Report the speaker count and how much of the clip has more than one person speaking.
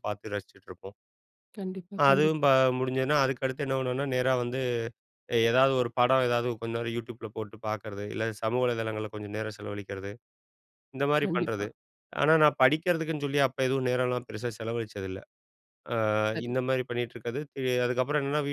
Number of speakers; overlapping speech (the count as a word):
two, about 4%